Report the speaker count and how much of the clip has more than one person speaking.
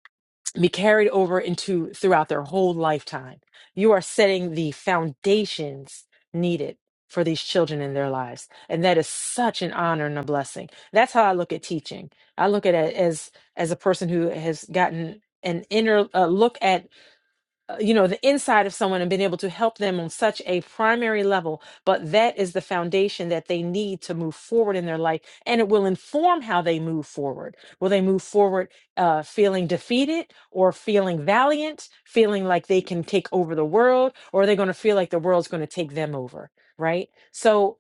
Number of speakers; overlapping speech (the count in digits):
1, no overlap